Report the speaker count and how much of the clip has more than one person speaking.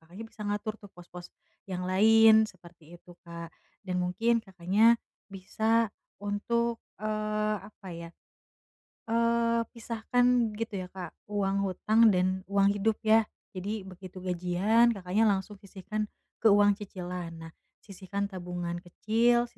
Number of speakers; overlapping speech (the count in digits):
1, no overlap